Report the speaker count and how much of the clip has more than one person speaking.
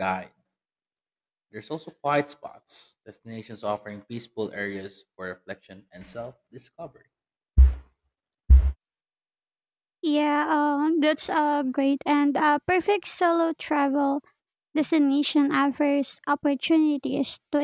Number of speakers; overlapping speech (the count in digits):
2, no overlap